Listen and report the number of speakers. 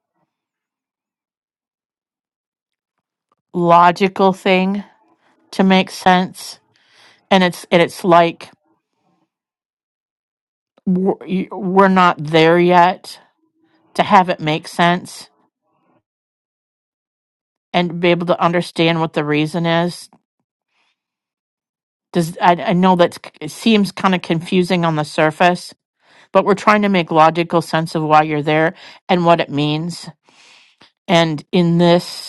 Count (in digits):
1